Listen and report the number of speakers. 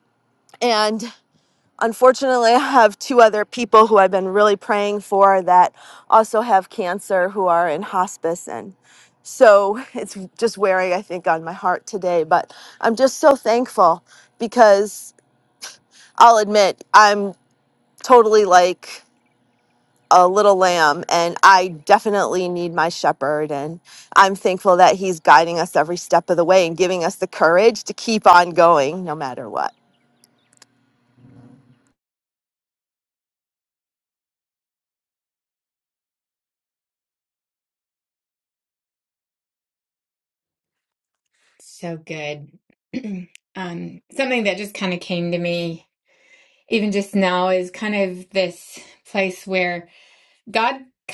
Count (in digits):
2